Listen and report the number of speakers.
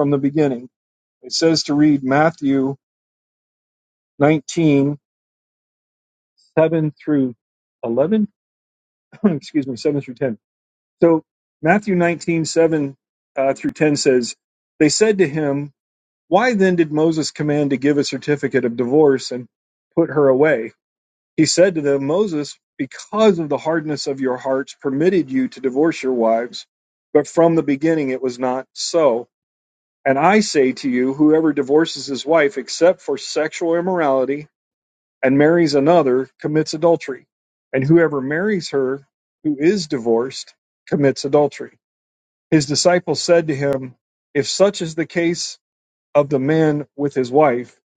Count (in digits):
1